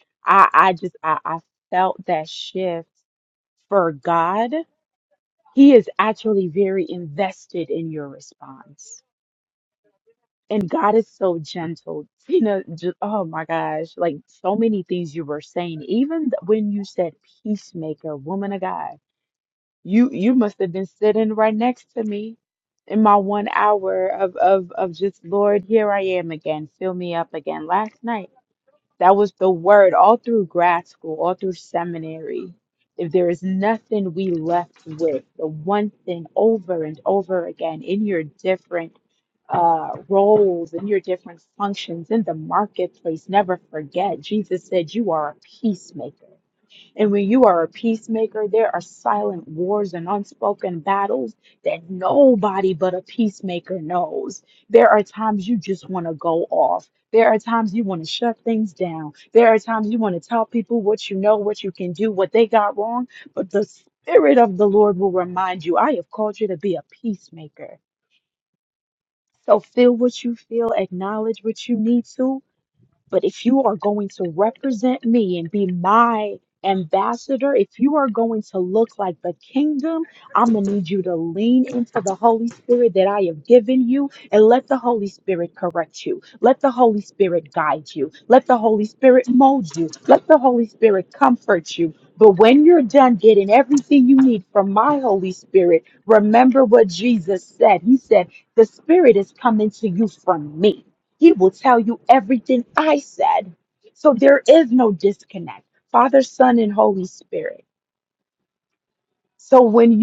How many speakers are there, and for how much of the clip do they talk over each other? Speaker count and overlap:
1, no overlap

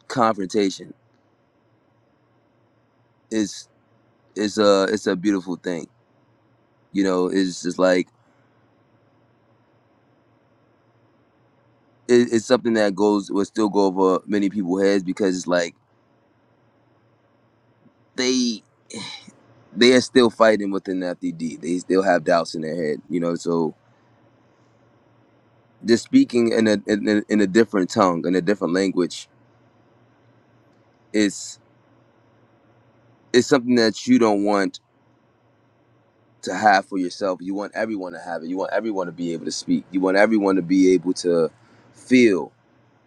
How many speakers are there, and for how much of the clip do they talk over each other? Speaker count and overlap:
1, no overlap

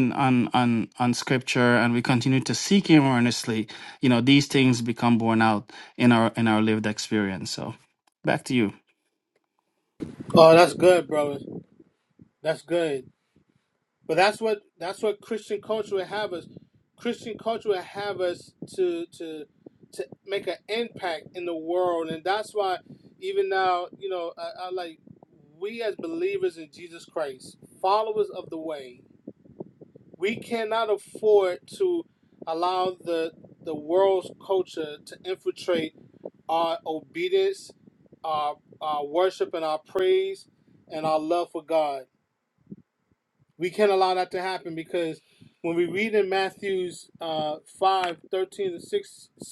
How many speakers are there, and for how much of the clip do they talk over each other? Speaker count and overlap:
2, no overlap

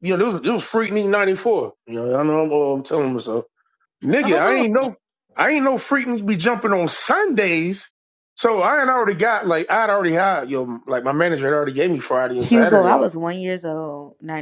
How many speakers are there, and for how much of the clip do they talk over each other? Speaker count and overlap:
2, about 8%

